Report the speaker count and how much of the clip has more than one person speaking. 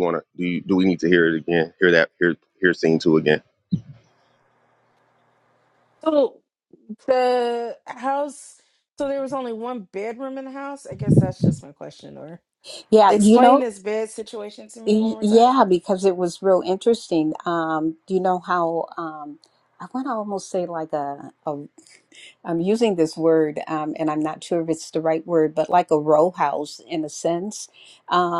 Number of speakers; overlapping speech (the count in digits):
3, about 4%